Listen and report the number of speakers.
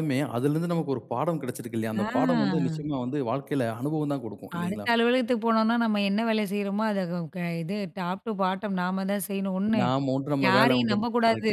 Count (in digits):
2